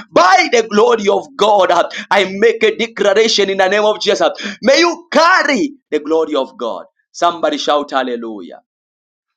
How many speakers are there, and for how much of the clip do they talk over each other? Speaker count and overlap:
1, no overlap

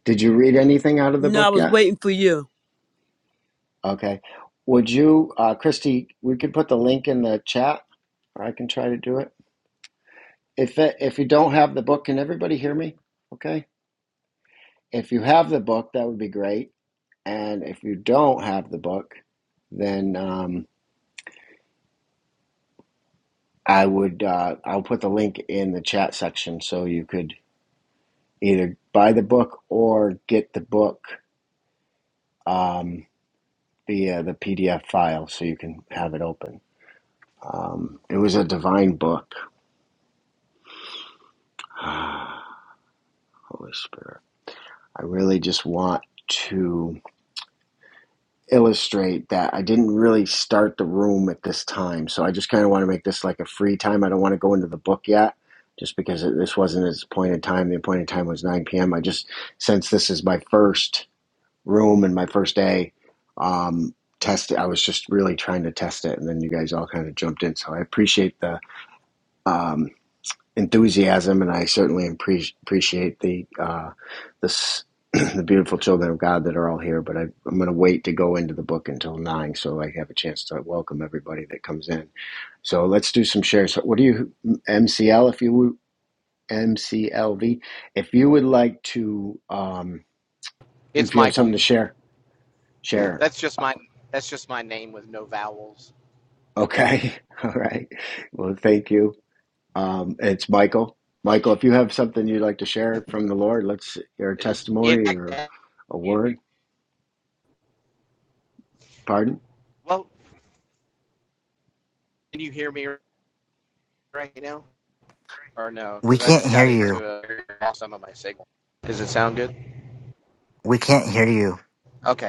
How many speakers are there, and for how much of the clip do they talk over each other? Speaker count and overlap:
4, about 3%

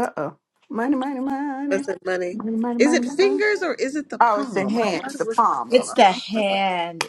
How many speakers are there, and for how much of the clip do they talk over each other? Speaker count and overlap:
3, about 40%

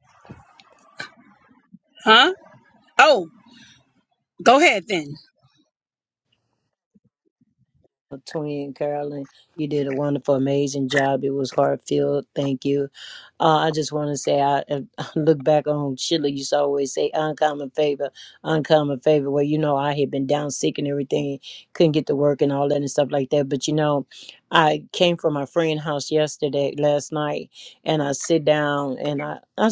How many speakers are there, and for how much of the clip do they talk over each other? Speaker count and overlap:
2, no overlap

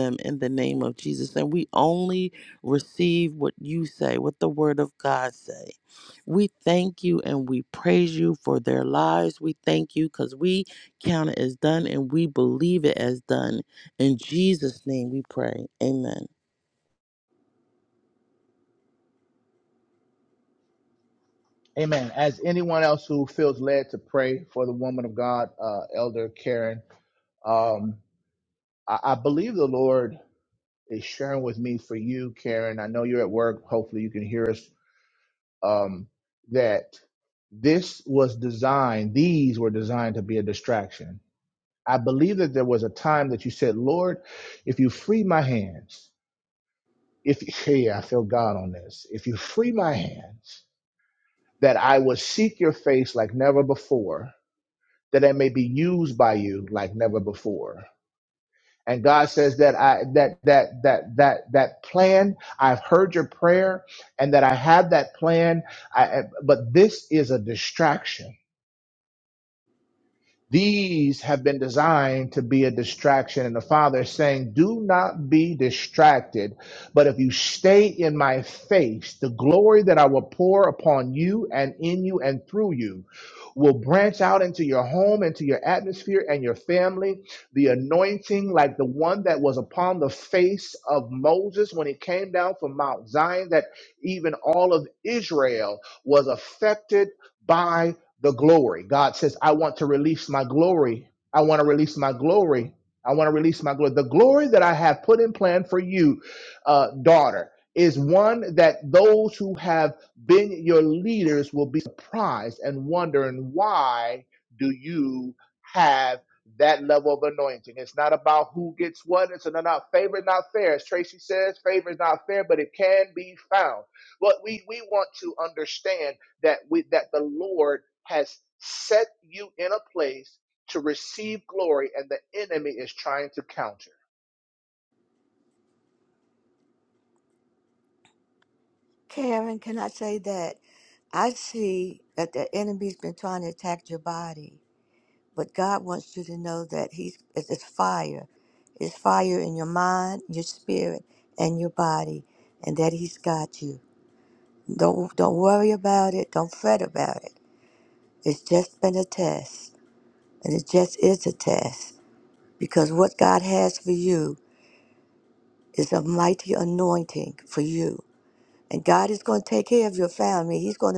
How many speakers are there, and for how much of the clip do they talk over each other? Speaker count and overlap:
3, no overlap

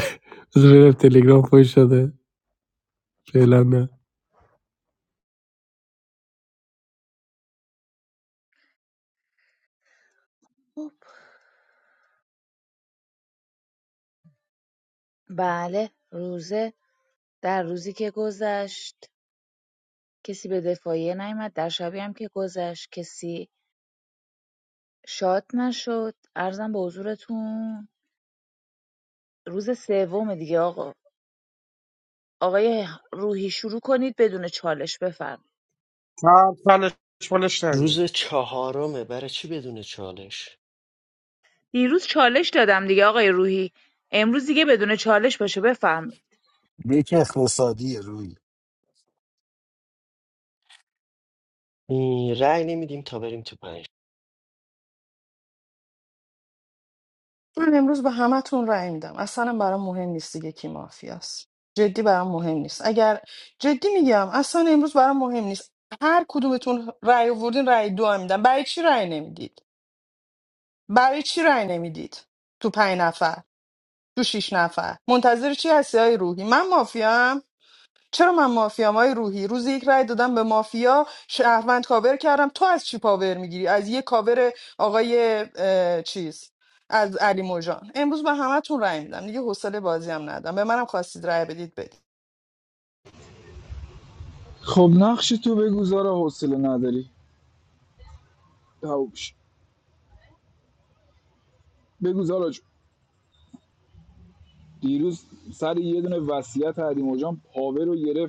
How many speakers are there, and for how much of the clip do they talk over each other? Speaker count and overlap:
7, under 1%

